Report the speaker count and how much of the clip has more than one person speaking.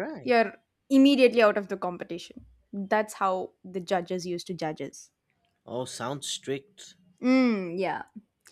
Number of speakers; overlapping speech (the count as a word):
two, about 3%